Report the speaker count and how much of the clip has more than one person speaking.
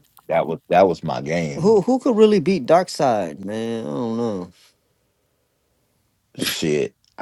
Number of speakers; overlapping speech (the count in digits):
2, about 2%